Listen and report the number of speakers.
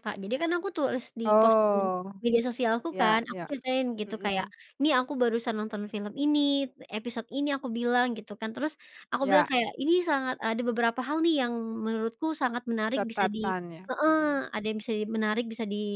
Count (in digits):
2